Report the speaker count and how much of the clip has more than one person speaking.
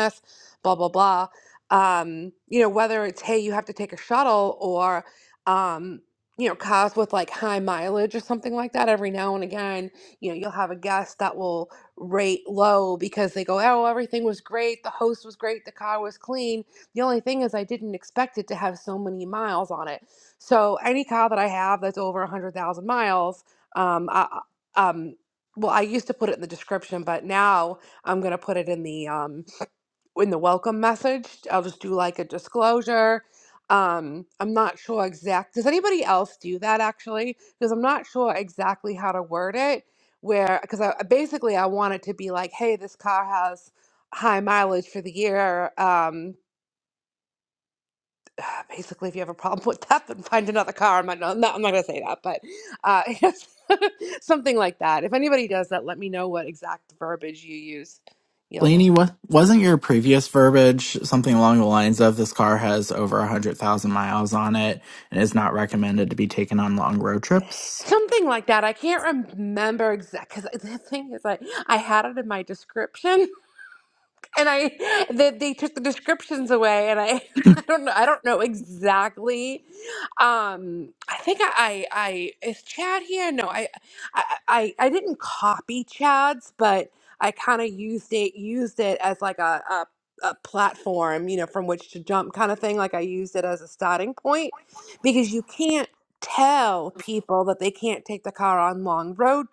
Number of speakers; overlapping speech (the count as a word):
two, under 1%